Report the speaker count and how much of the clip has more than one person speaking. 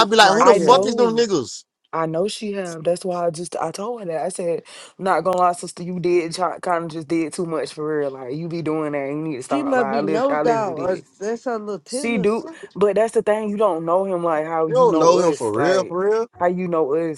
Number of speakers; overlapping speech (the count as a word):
three, about 26%